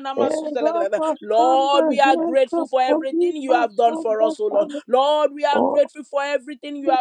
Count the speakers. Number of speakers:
two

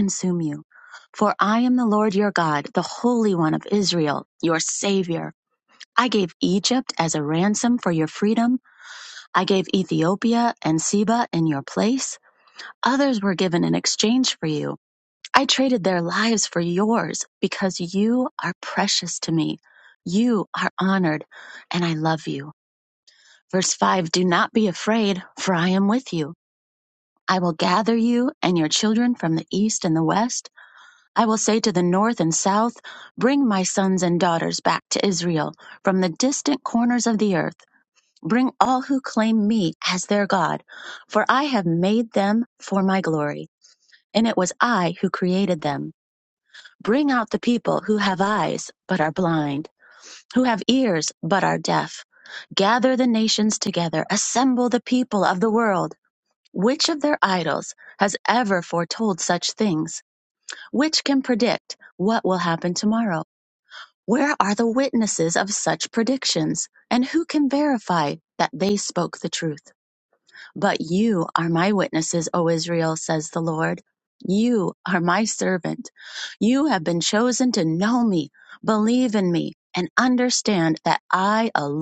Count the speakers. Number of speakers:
one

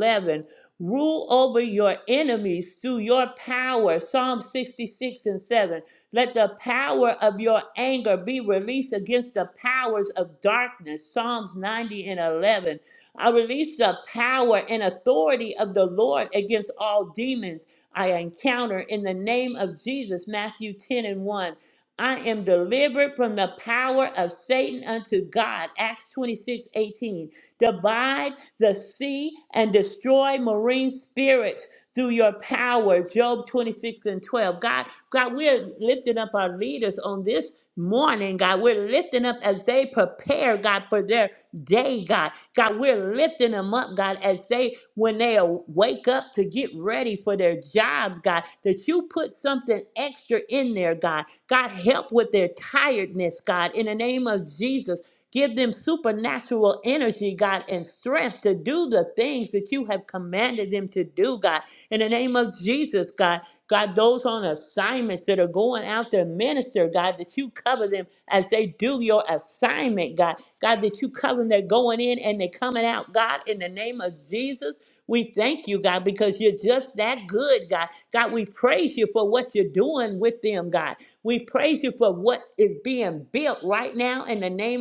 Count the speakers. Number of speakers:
one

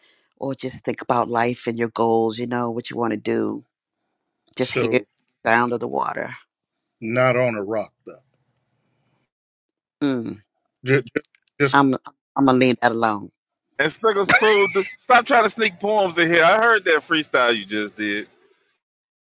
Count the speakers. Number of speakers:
three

